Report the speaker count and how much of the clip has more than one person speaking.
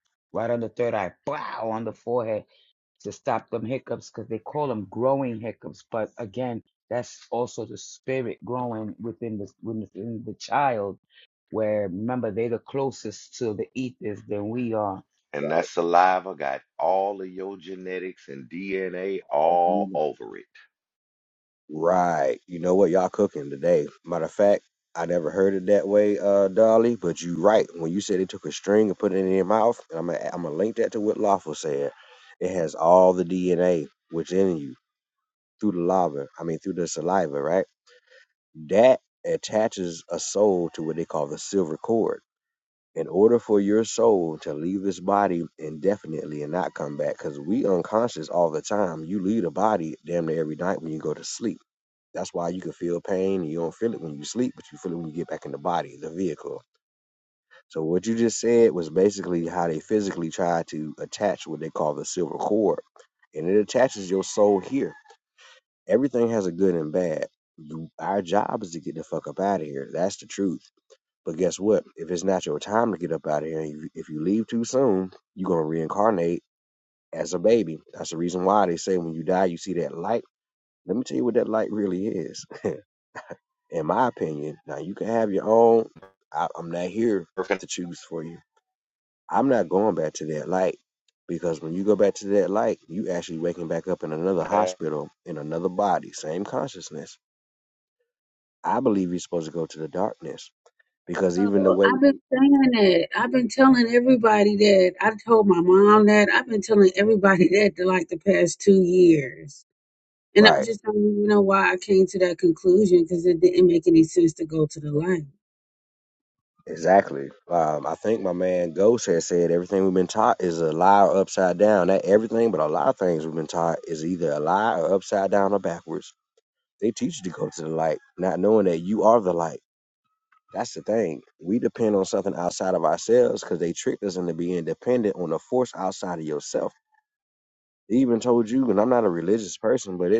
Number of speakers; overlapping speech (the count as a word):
four, about 1%